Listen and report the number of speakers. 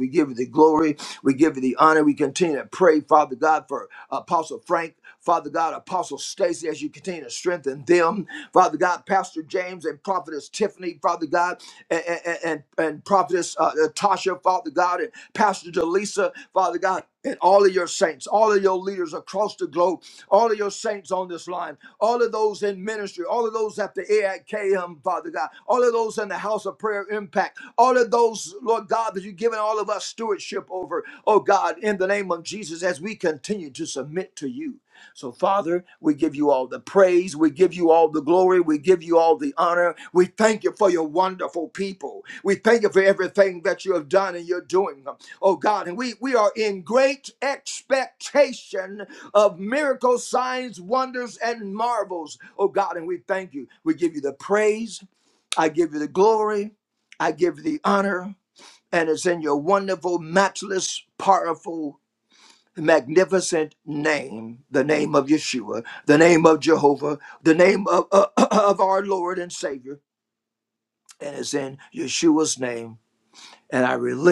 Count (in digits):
1